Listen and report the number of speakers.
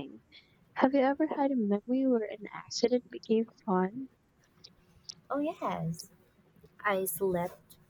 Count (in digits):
2